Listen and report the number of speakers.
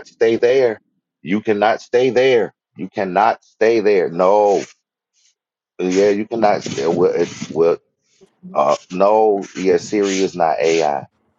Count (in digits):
1